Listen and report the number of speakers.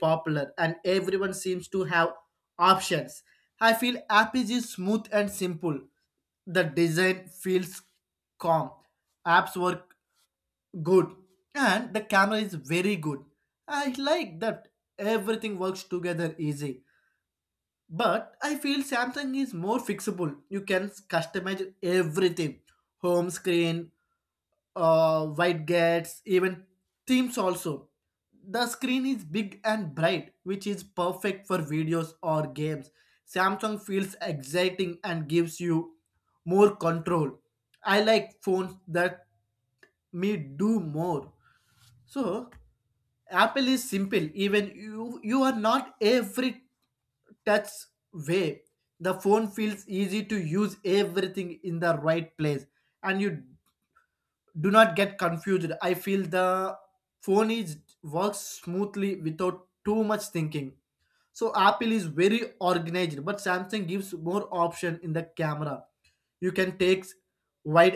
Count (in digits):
1